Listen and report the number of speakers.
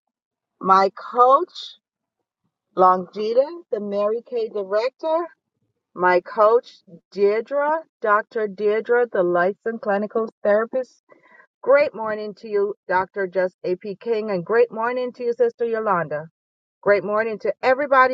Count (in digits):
1